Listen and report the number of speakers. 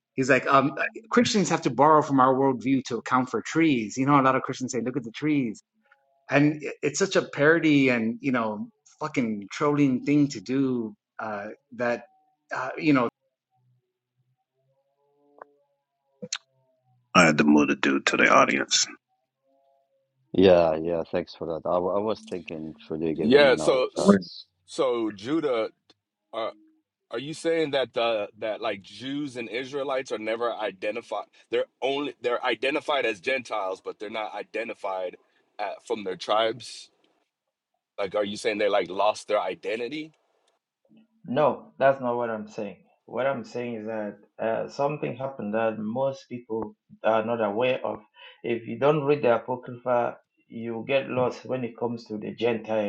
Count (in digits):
5